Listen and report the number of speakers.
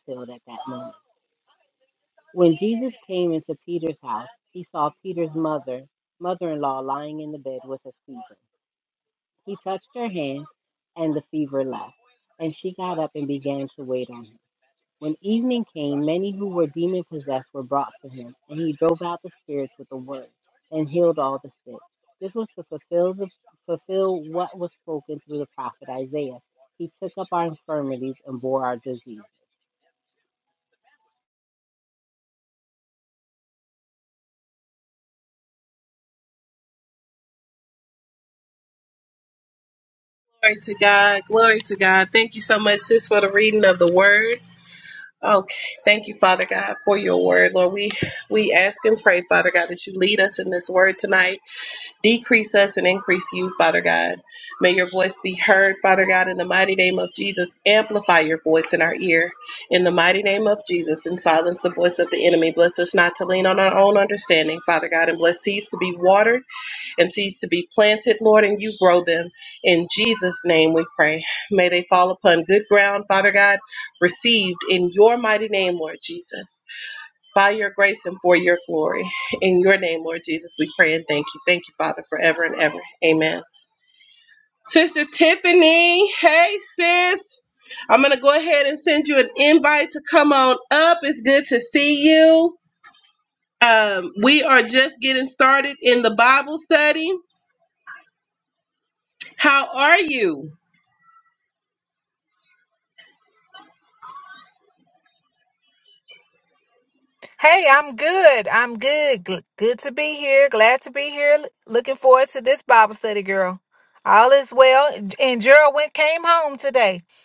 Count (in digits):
3